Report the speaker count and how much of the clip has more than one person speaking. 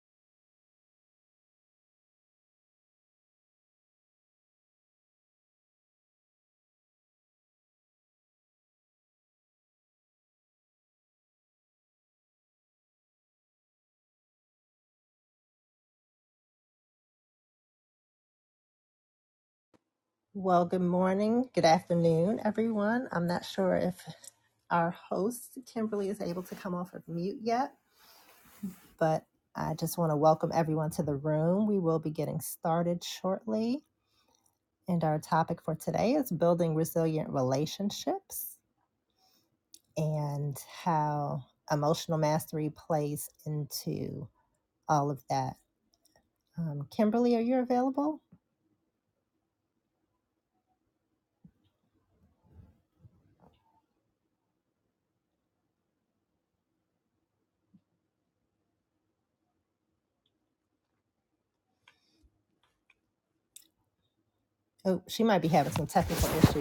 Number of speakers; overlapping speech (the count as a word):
one, no overlap